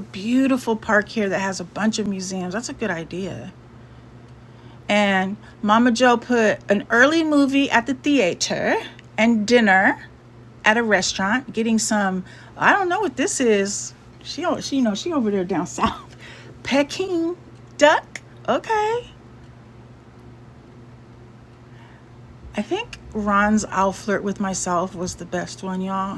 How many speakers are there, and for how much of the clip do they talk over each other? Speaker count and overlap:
one, no overlap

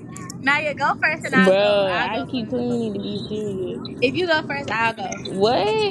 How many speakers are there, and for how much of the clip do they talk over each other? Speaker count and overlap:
two, about 25%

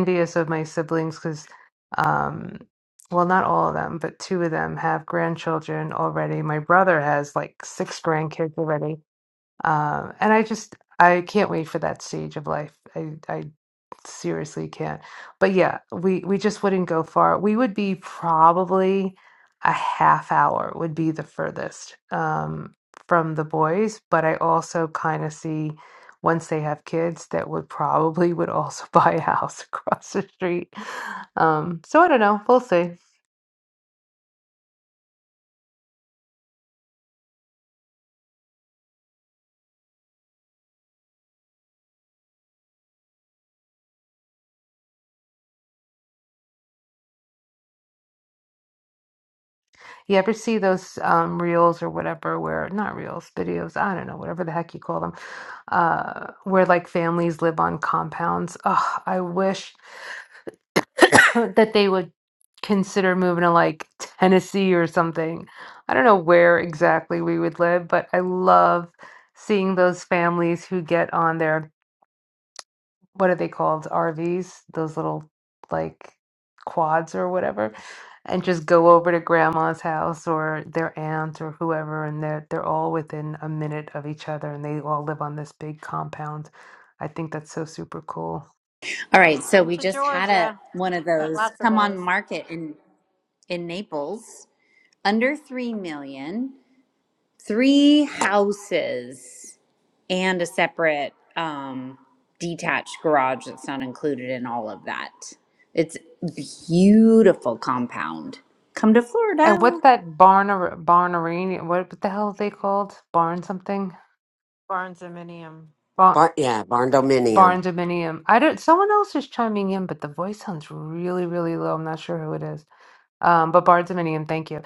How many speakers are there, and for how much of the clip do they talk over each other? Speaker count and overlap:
four, about 2%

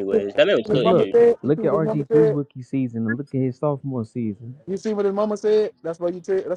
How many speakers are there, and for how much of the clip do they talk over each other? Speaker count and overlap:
three, about 24%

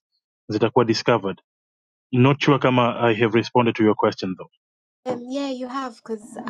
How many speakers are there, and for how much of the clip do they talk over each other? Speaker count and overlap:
two, no overlap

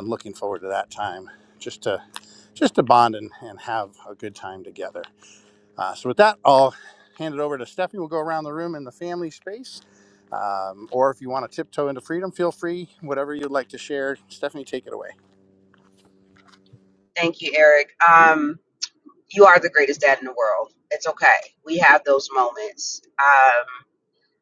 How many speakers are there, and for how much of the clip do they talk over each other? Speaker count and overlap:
two, no overlap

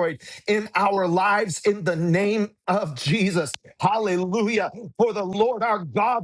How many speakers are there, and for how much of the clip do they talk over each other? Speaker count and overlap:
one, no overlap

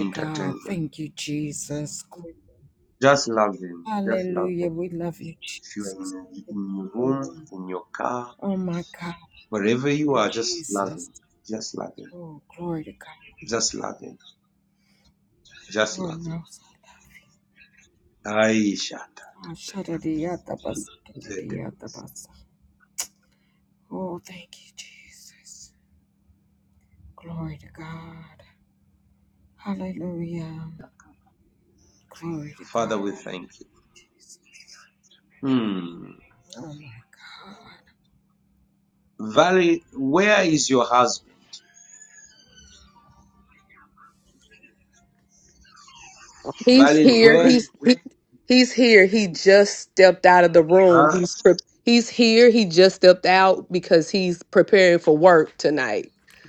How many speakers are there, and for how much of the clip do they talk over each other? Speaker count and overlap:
three, about 10%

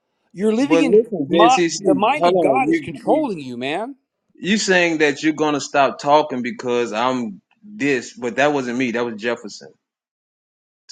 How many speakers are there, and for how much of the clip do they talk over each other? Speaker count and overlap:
two, about 22%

